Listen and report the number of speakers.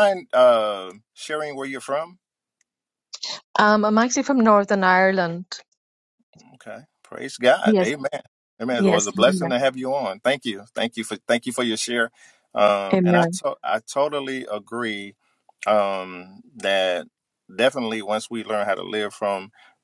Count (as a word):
two